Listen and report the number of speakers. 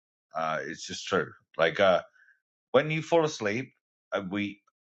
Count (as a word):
one